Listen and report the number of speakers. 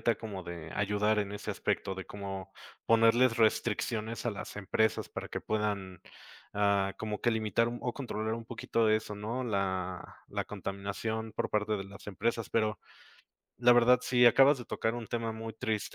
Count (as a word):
one